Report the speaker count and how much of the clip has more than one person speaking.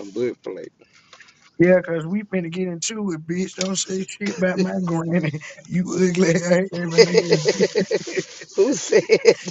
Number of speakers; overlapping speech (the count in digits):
2, no overlap